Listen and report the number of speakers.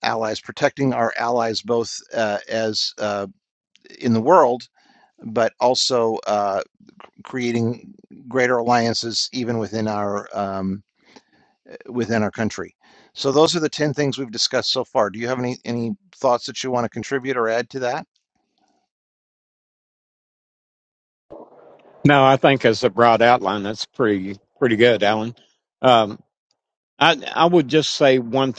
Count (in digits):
2